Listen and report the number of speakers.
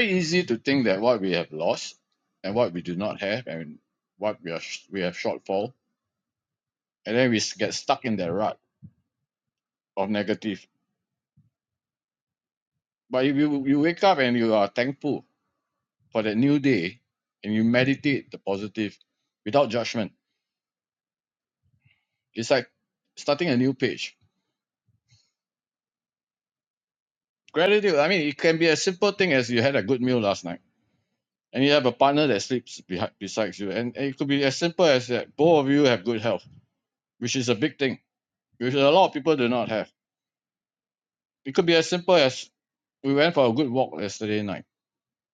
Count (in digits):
1